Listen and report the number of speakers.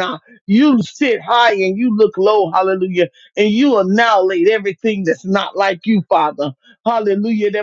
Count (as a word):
one